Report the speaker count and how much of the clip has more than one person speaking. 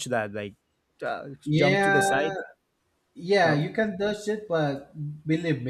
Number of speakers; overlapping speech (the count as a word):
two, about 18%